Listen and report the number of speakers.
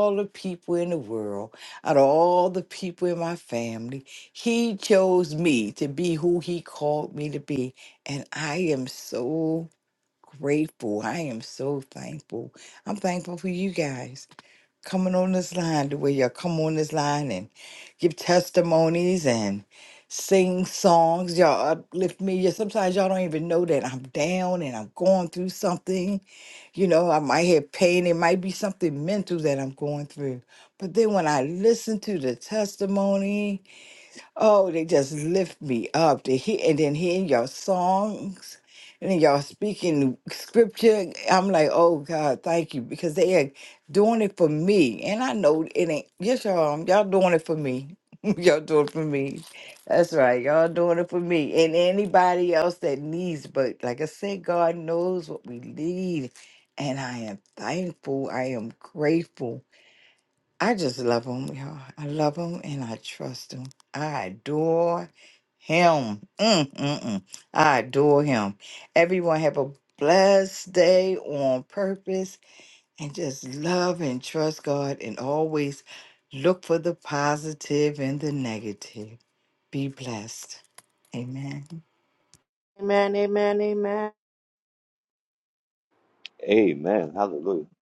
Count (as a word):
three